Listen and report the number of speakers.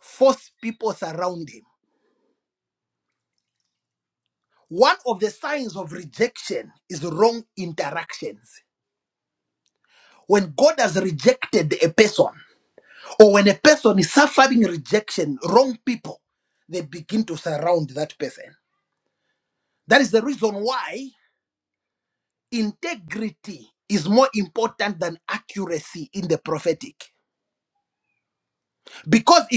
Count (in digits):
1